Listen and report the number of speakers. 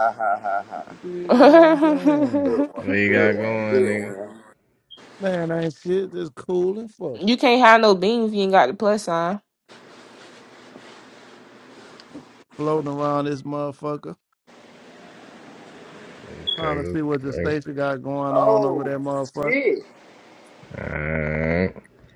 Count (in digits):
4